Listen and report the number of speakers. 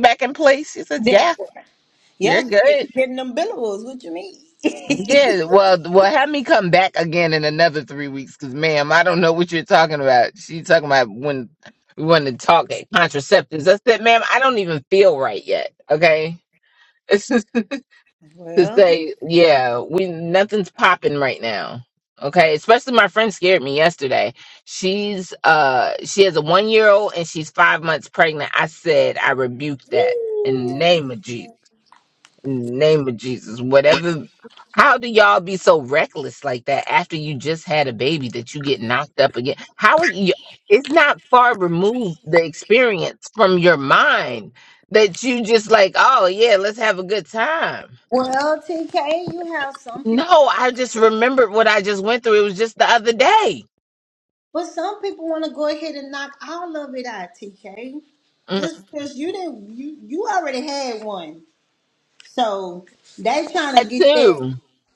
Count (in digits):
2